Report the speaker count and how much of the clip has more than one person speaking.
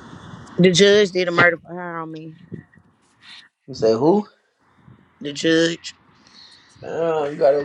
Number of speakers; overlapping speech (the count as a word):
two, no overlap